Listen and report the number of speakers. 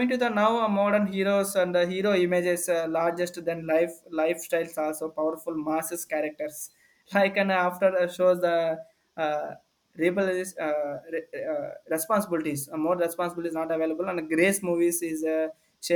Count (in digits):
1